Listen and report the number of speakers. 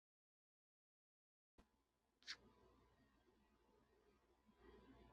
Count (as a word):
zero